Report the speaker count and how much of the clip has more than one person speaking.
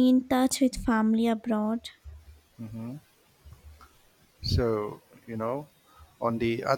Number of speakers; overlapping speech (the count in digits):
2, no overlap